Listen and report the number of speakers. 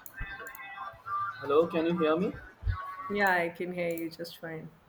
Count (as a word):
two